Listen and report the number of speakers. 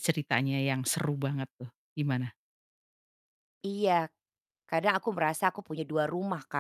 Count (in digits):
2